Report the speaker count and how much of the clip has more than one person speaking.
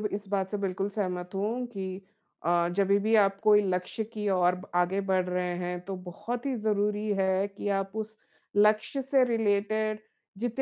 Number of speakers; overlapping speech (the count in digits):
1, no overlap